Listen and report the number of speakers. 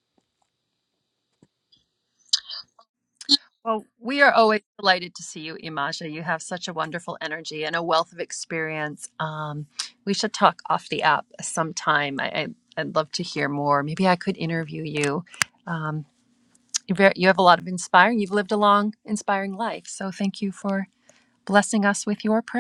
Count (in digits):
1